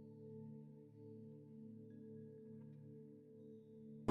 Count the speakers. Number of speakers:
0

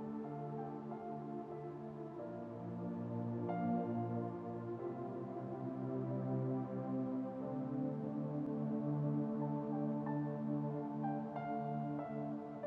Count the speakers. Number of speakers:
0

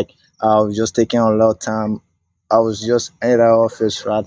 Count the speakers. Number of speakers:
1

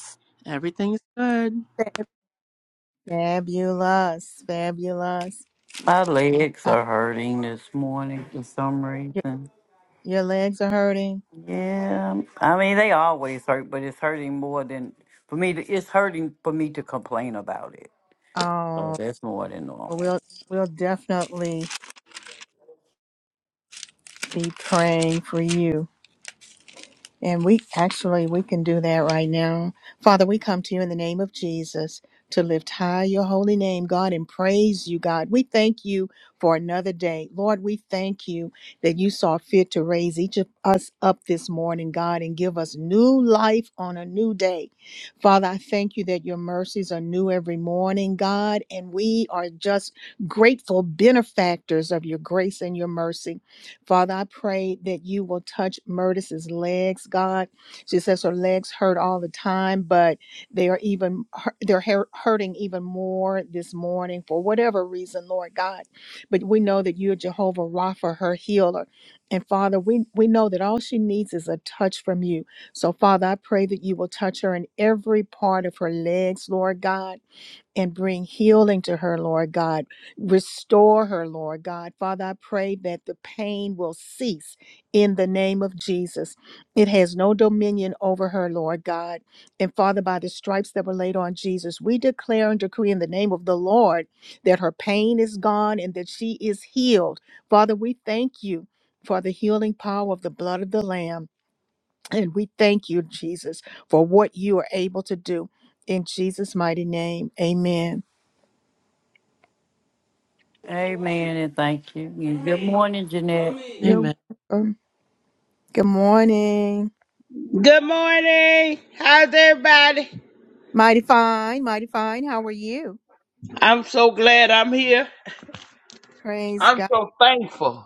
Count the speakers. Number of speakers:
4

